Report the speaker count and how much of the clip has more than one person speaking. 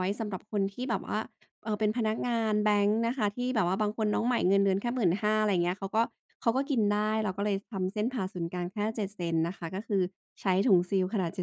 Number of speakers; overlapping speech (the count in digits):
1, no overlap